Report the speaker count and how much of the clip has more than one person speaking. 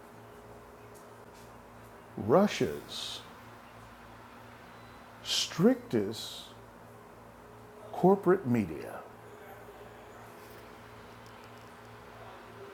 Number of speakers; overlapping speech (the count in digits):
1, no overlap